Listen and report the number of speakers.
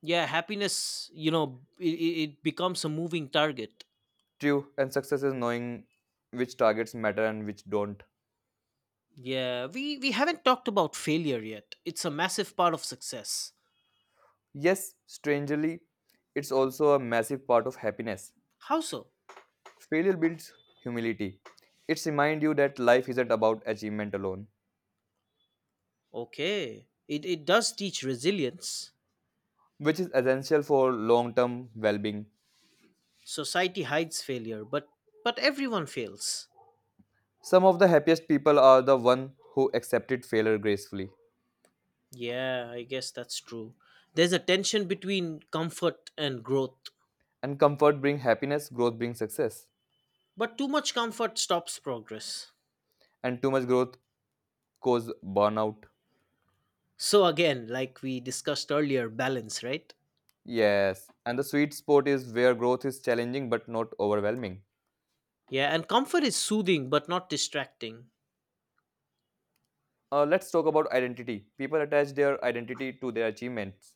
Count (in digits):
2